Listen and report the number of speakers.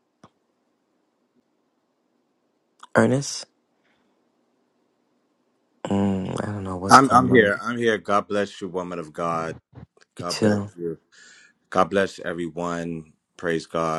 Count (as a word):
two